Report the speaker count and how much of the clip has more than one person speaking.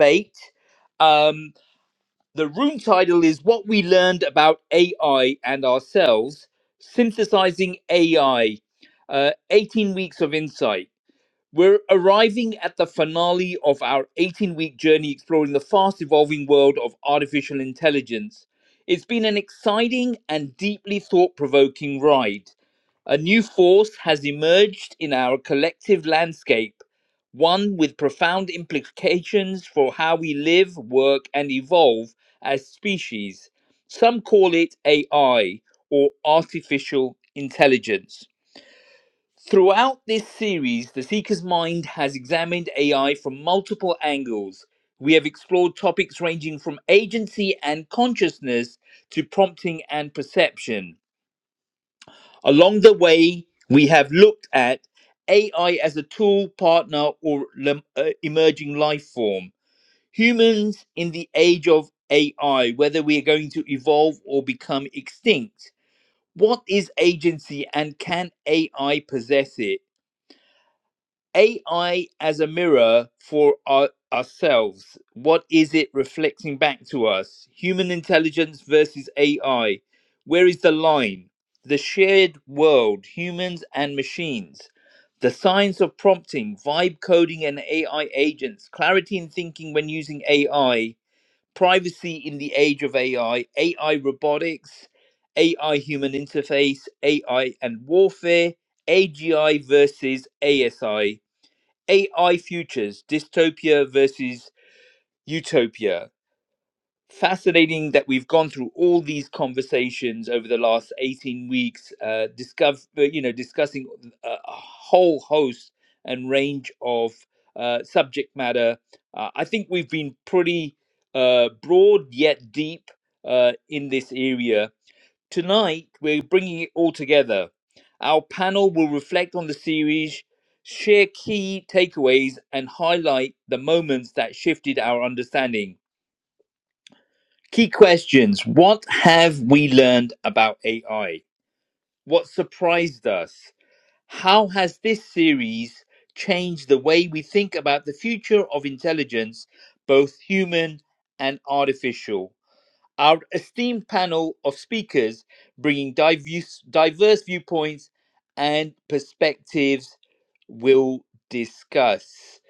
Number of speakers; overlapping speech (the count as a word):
one, no overlap